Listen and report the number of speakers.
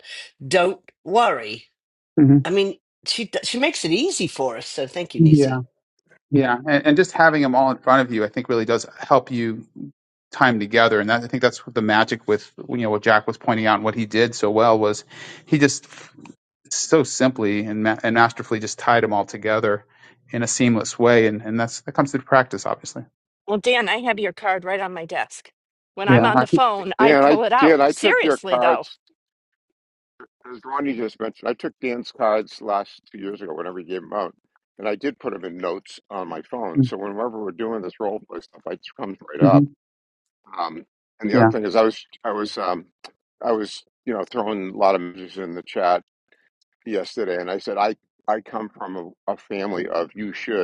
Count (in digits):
4